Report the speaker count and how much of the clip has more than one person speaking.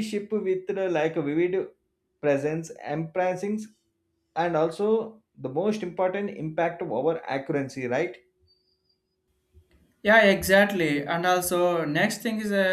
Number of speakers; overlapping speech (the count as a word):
two, no overlap